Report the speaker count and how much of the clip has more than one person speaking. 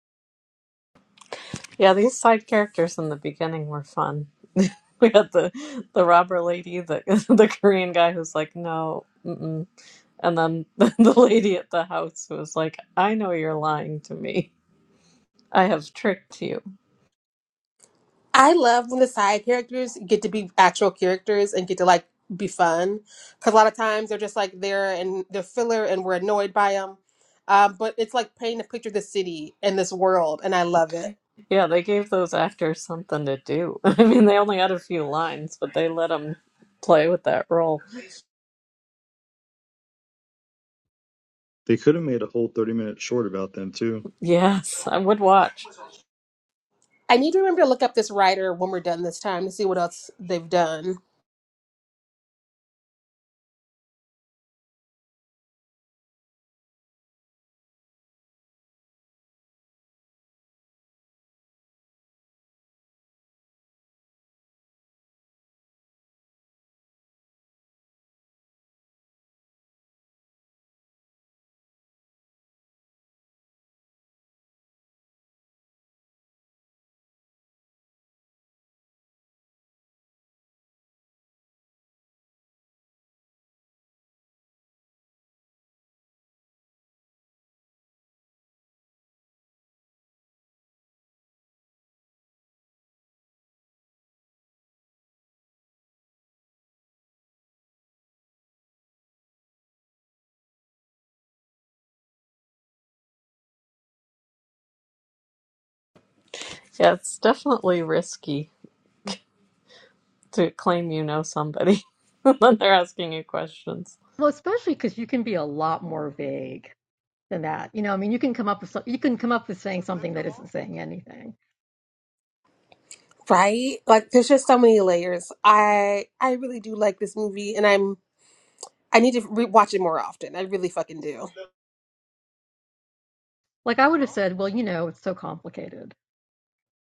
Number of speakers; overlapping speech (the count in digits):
4, no overlap